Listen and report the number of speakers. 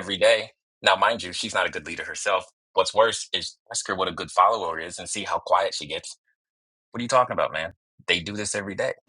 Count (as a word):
one